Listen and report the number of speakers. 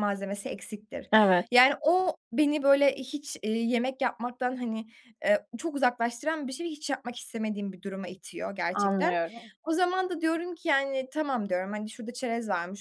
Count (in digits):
2